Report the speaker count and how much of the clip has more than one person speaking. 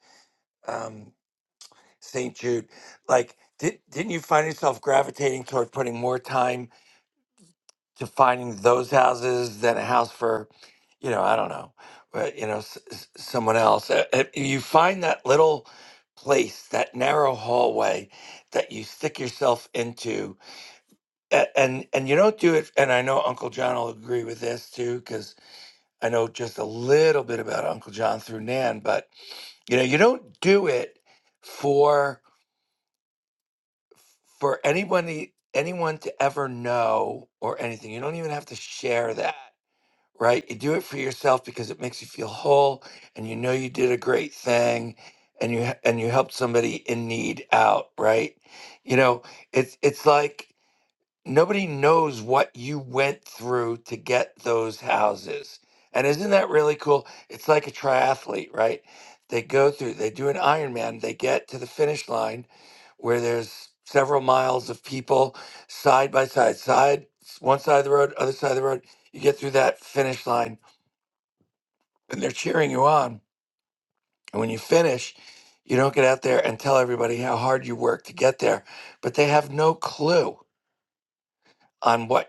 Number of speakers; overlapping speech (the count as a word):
one, no overlap